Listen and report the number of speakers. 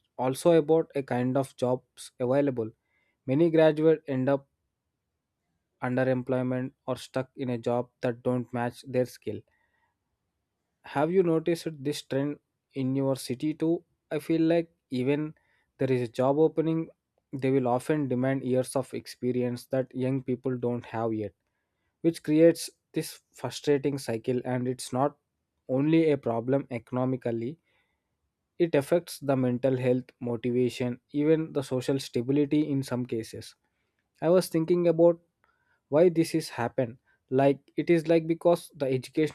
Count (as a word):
one